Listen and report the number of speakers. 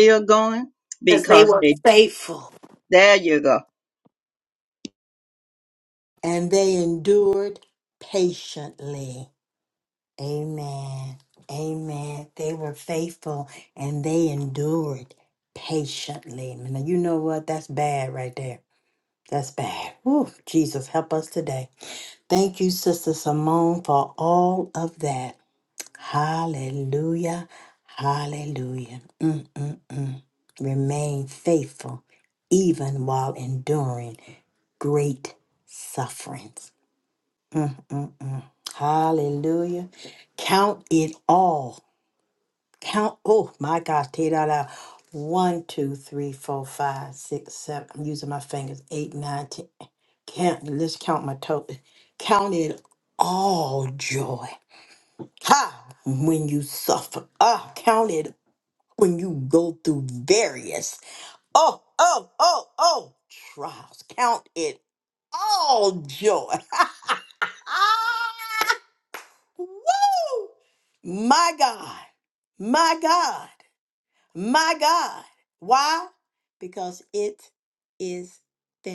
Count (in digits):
3